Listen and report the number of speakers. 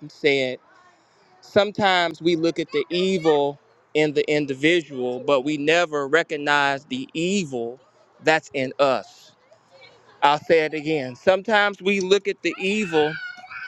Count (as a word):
one